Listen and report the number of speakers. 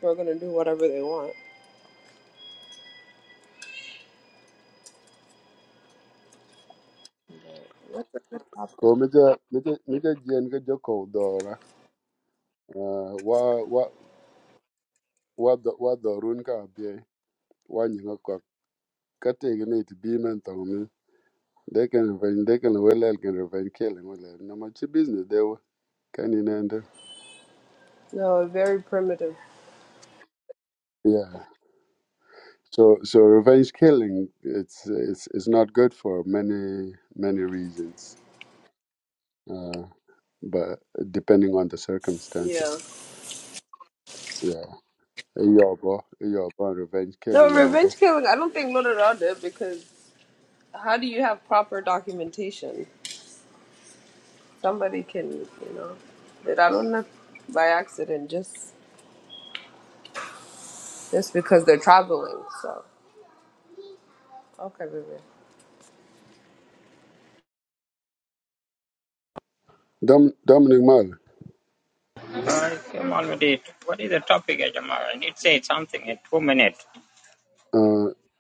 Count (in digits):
3